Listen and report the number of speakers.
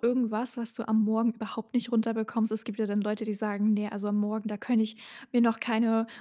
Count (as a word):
one